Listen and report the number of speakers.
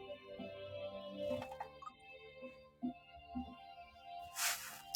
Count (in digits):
0